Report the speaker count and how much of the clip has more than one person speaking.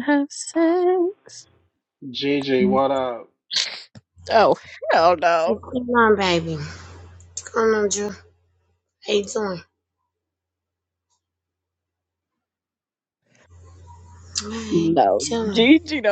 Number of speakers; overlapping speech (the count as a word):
three, about 6%